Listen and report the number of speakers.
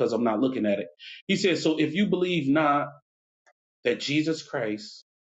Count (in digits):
1